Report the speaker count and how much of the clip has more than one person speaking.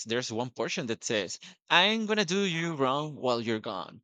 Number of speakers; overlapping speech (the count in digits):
1, no overlap